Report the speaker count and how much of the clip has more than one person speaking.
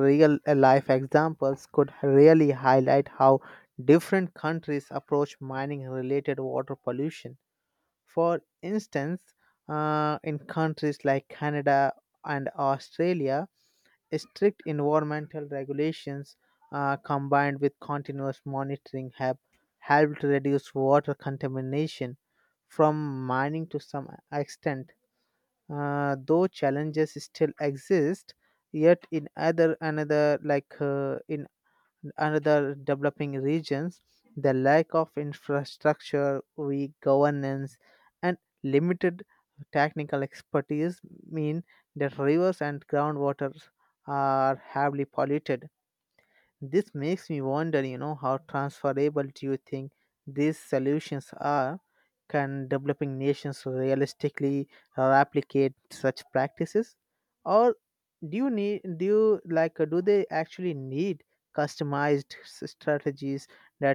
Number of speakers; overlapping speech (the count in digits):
1, no overlap